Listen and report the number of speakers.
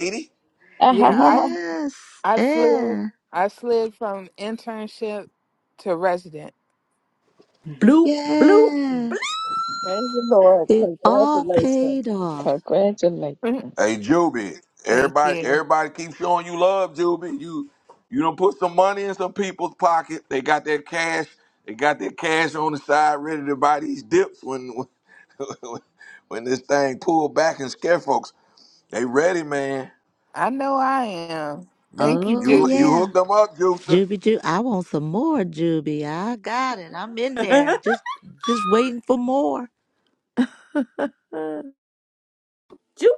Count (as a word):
five